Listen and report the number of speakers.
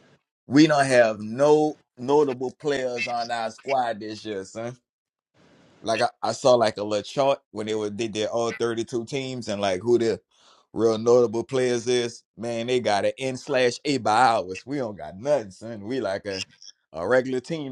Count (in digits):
1